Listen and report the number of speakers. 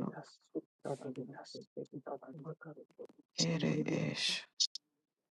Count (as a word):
two